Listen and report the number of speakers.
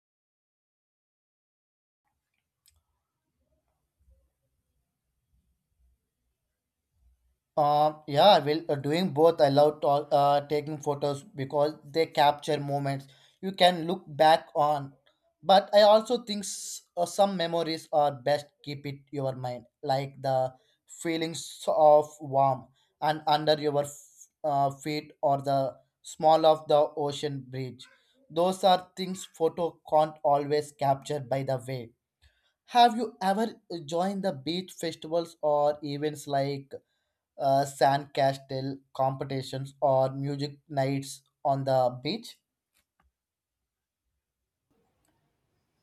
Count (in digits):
1